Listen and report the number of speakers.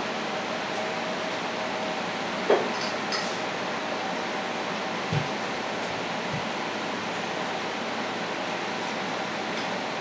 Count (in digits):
0